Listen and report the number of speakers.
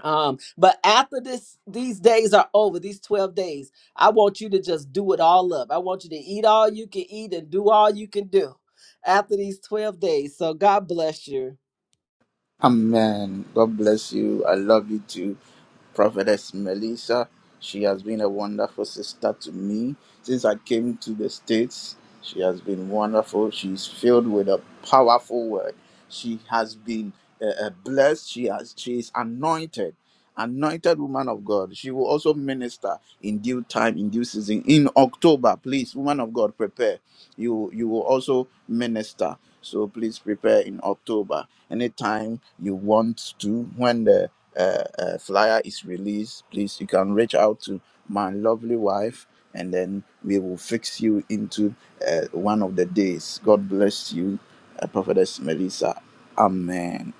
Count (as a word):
two